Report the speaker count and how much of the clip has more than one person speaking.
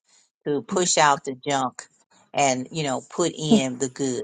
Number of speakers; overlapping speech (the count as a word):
one, no overlap